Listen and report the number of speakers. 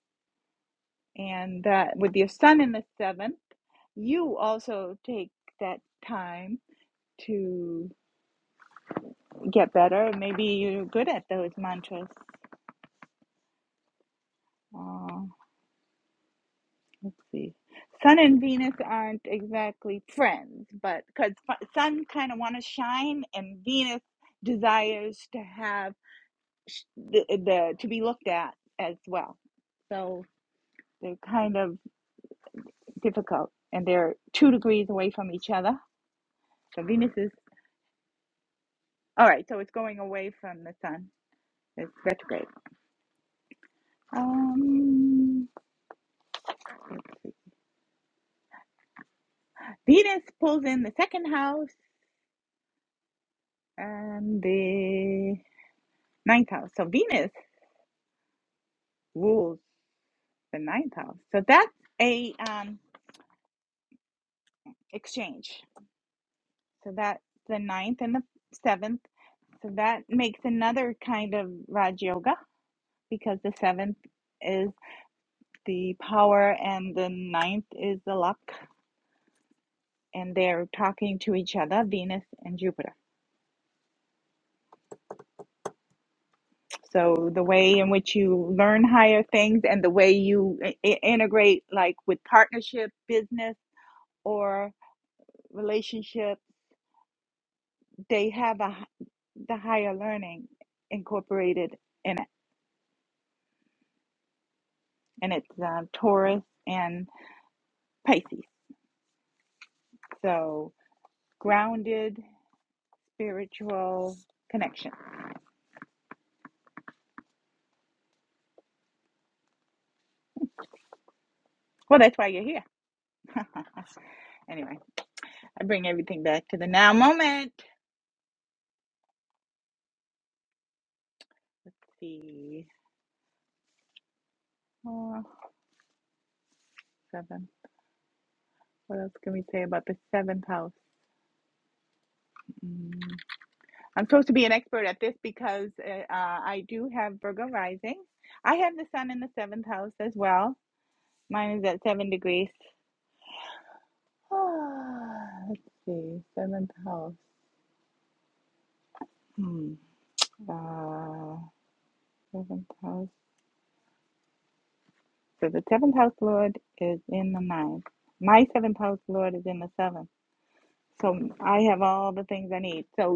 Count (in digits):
1